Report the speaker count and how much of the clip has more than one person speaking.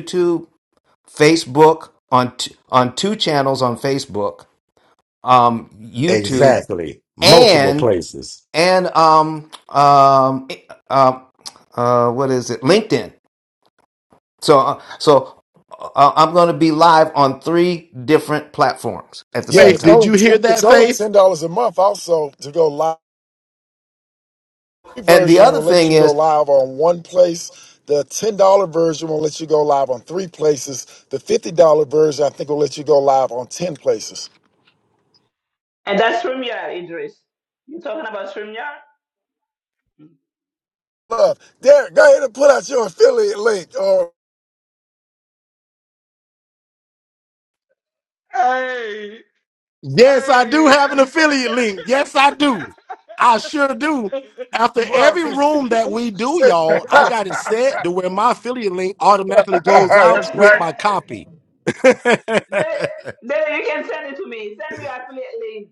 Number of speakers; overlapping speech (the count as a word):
five, about 9%